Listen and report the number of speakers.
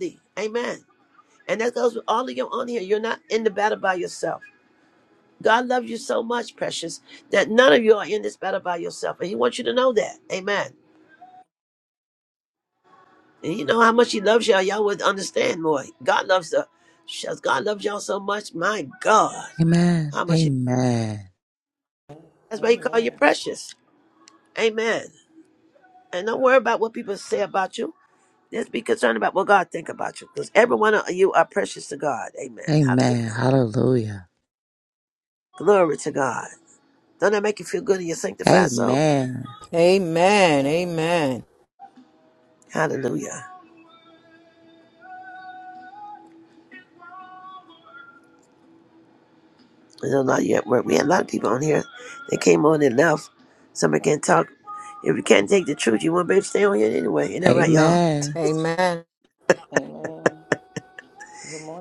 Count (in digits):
4